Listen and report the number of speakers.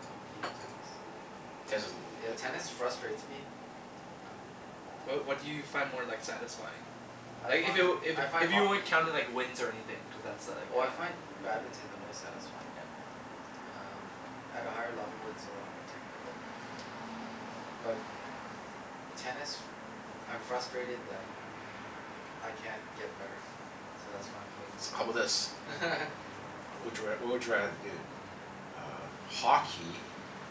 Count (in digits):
3